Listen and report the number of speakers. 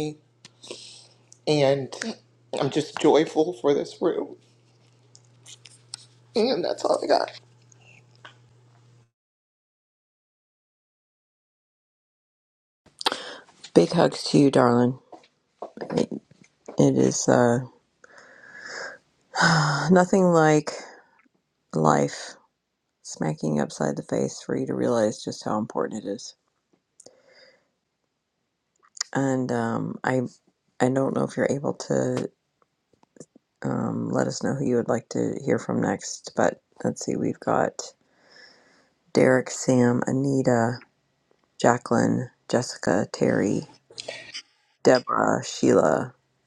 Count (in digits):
2